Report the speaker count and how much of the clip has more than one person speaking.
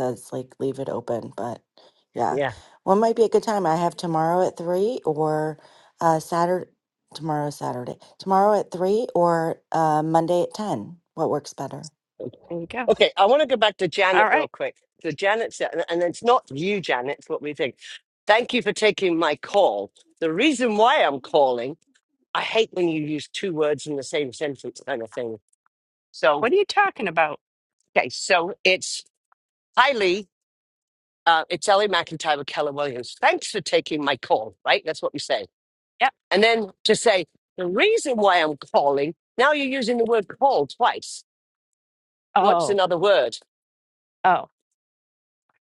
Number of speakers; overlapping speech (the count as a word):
three, about 2%